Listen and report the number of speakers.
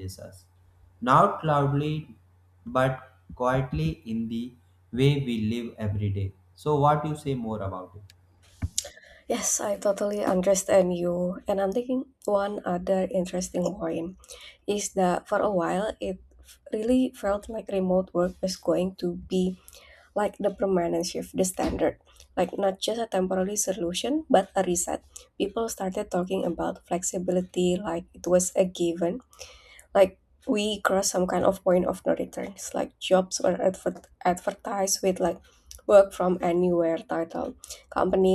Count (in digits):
2